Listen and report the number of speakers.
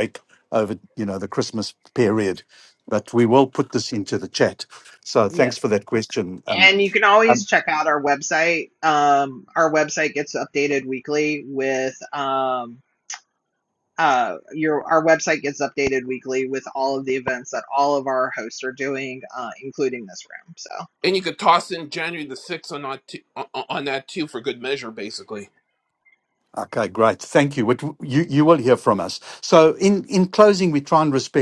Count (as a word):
three